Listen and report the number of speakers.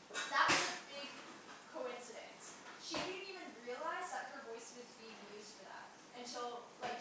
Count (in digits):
1